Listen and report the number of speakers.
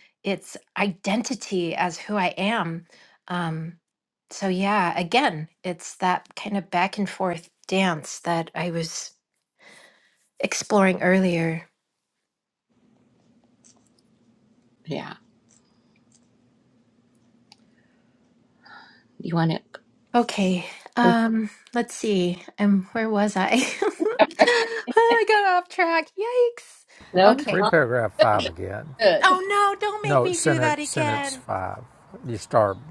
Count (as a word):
three